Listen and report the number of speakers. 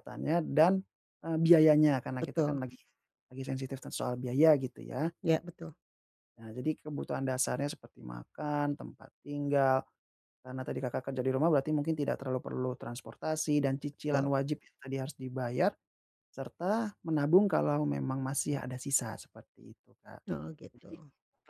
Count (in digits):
2